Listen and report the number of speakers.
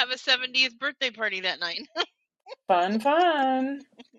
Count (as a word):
two